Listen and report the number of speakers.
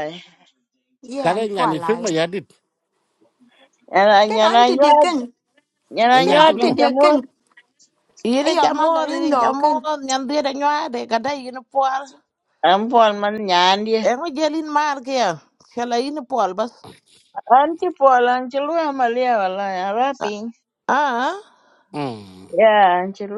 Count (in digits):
4